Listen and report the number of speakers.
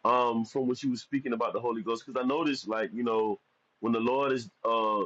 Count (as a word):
one